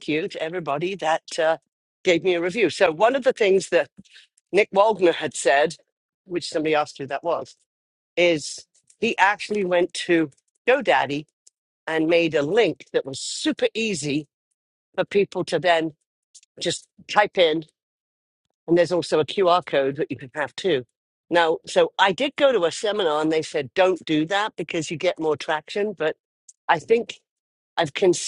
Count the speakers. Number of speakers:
one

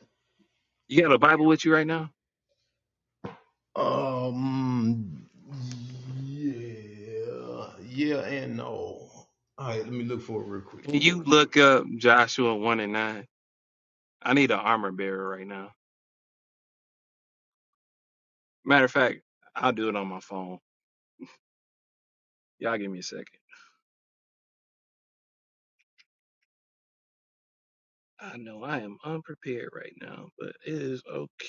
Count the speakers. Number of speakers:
two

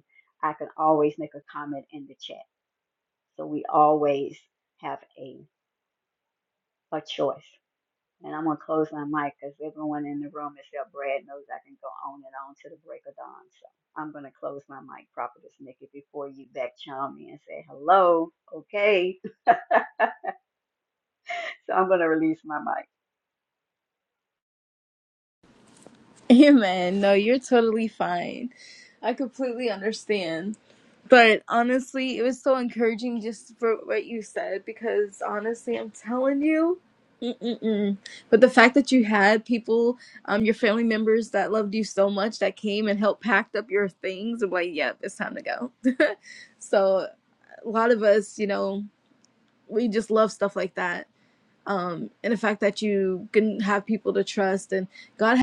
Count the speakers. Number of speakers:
two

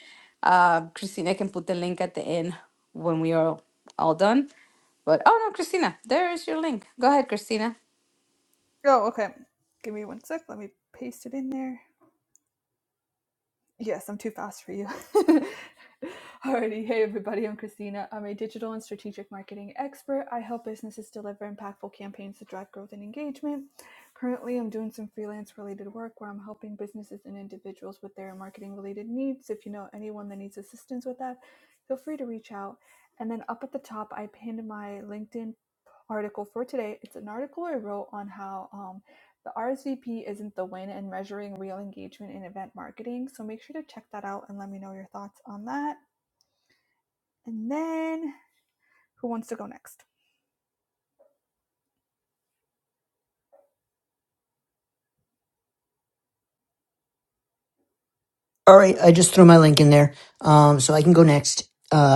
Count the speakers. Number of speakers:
three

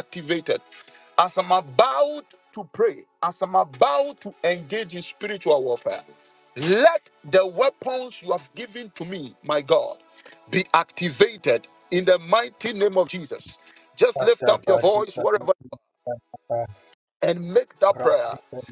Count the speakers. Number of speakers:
two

